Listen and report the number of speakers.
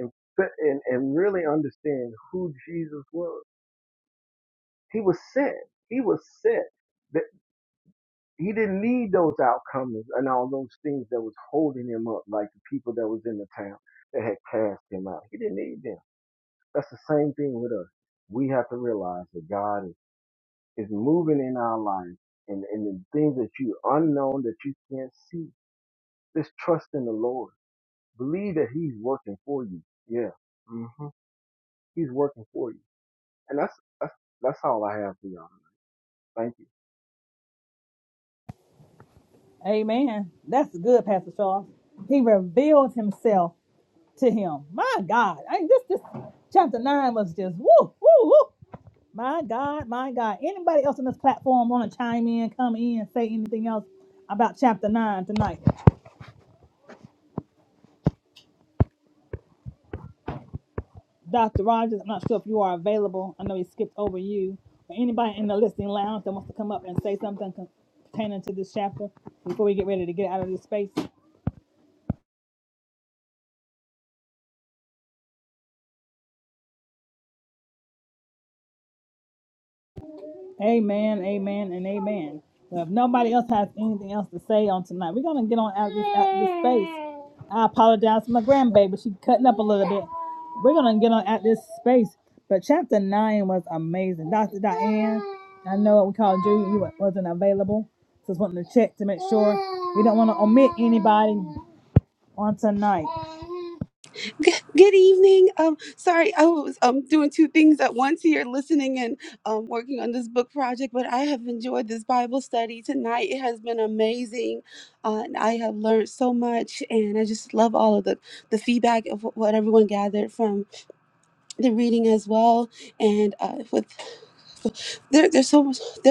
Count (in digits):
3